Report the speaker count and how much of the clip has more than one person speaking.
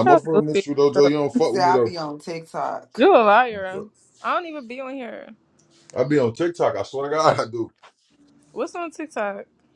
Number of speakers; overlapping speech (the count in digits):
3, about 12%